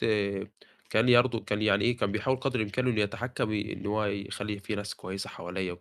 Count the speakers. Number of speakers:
1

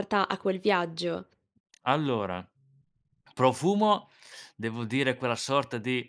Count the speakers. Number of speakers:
2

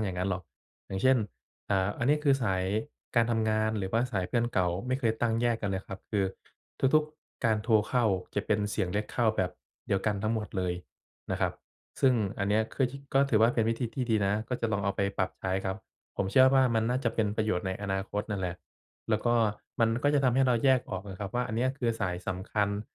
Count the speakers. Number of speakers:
1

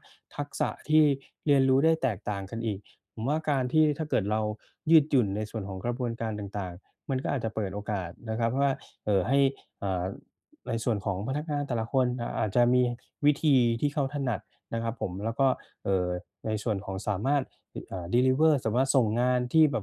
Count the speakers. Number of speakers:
1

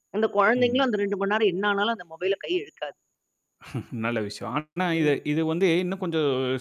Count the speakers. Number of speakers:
2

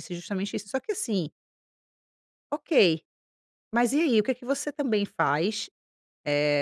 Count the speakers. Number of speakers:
1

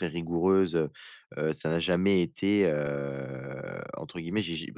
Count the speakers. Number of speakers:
1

